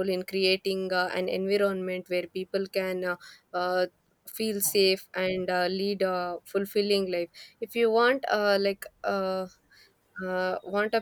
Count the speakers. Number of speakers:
1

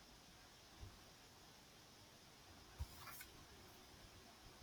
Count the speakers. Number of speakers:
0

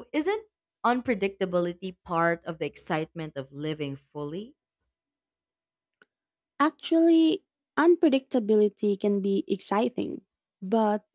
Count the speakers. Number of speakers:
2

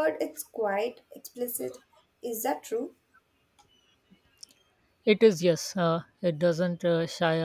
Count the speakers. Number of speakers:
2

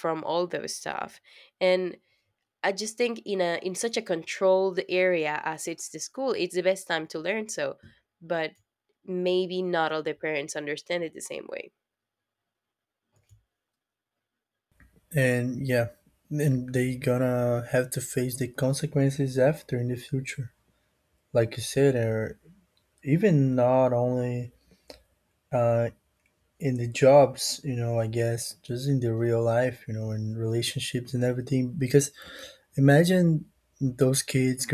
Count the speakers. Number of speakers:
2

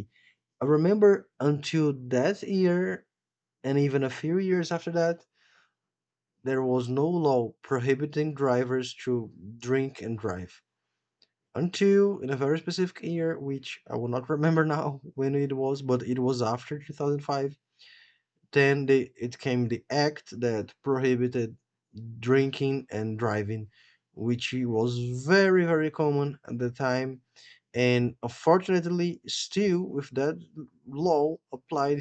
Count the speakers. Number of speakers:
1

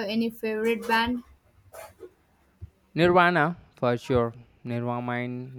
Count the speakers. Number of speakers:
2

